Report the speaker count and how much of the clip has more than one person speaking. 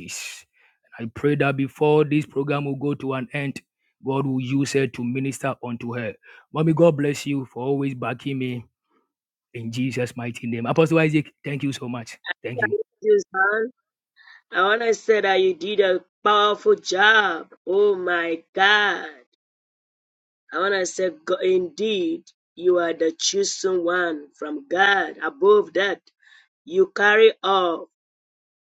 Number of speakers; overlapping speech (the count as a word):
two, no overlap